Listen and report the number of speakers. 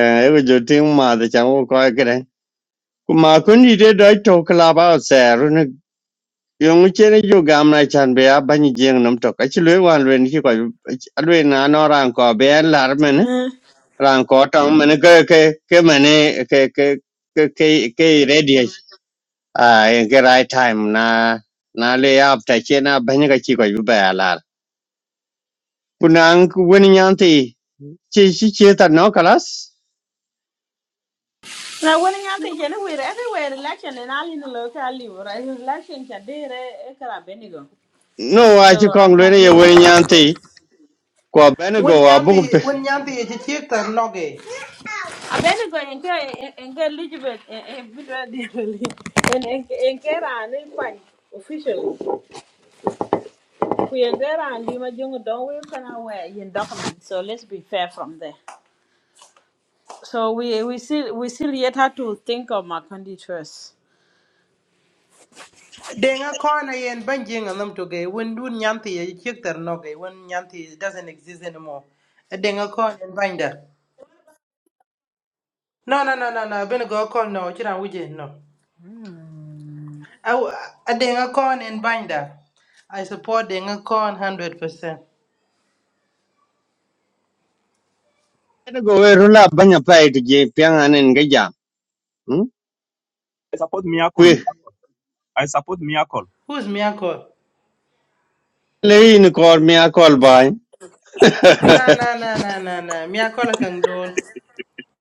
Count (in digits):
4